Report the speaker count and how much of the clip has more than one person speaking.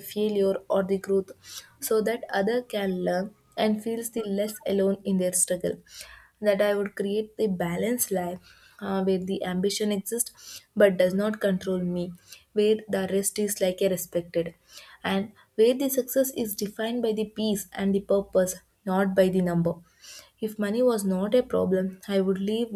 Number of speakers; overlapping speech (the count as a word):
one, no overlap